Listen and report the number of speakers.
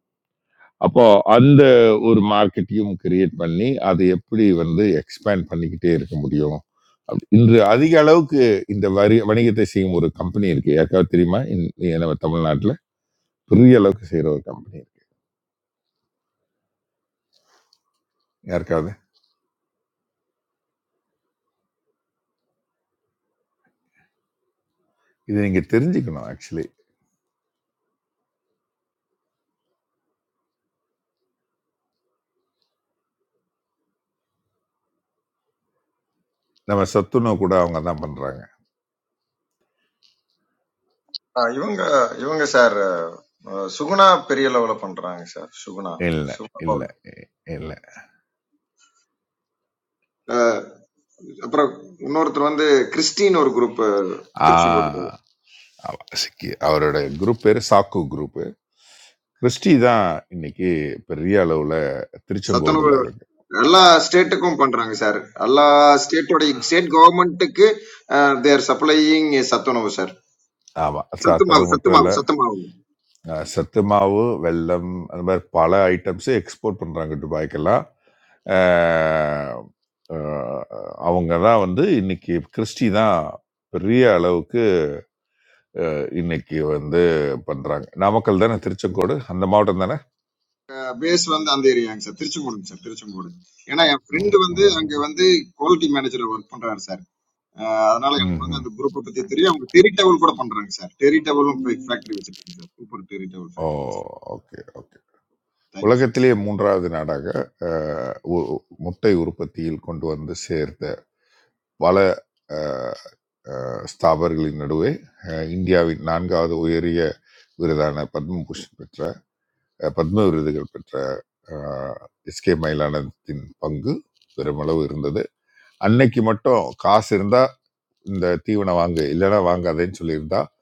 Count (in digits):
2